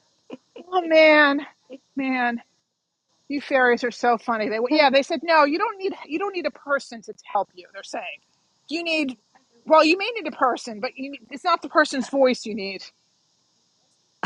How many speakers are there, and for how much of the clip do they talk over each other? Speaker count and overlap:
one, no overlap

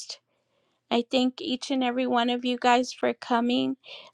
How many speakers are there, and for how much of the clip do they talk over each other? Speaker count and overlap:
one, no overlap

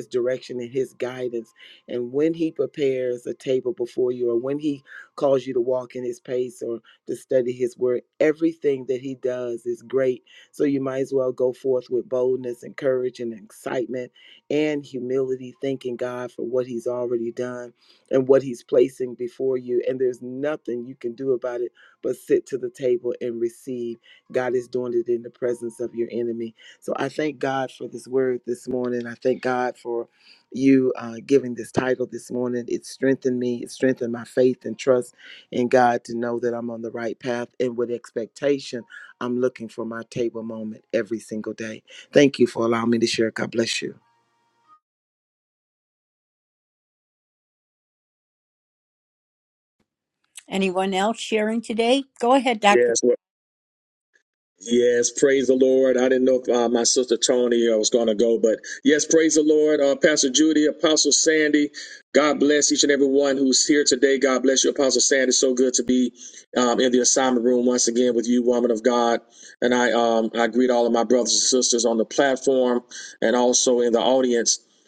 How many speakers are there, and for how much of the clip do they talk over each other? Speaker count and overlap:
three, under 1%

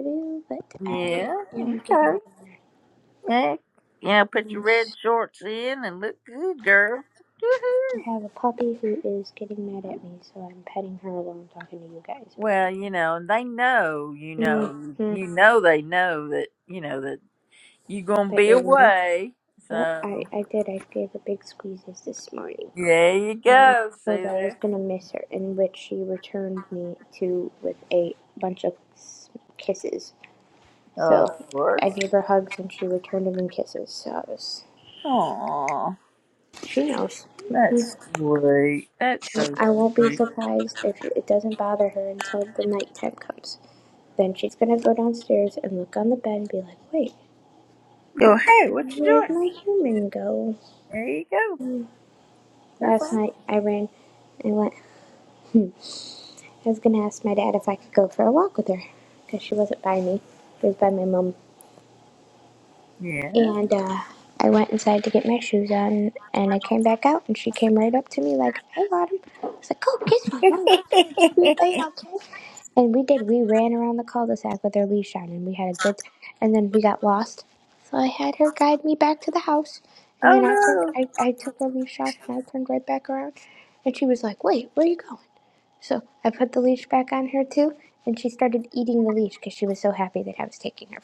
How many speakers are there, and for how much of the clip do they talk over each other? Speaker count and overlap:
two, about 8%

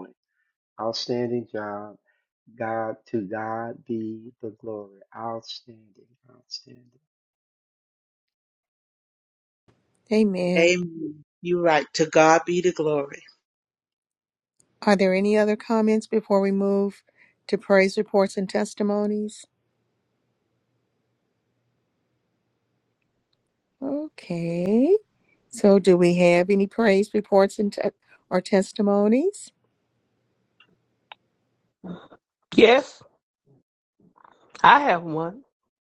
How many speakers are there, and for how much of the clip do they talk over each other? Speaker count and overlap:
four, under 1%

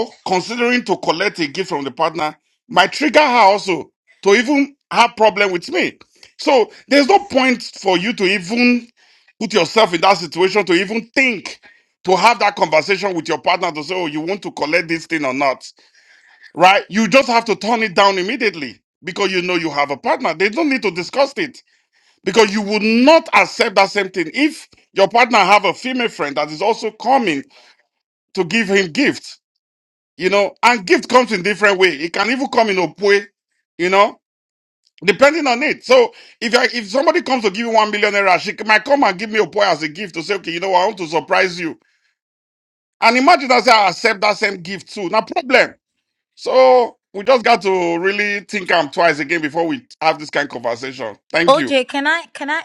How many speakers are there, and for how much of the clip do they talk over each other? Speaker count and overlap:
two, under 1%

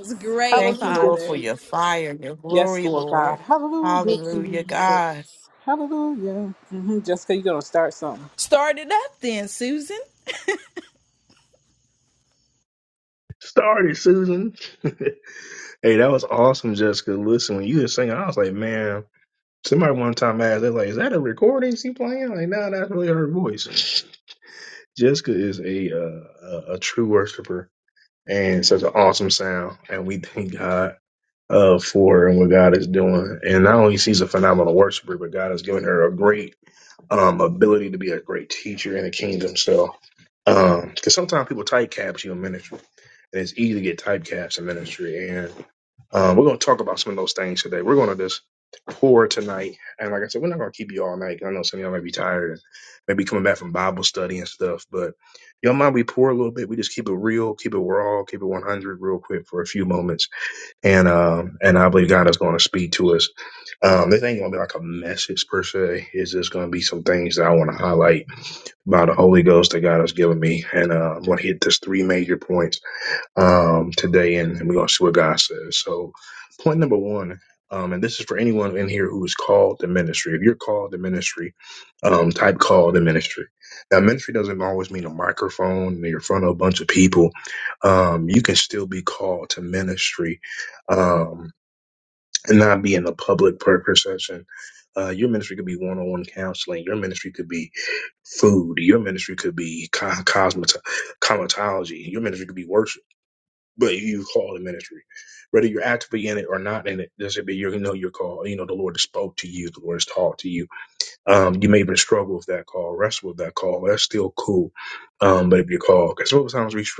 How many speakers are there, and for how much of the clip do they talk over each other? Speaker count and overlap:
four, about 3%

